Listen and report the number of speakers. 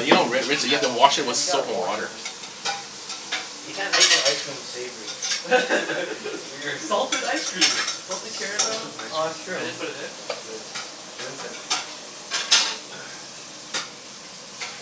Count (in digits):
4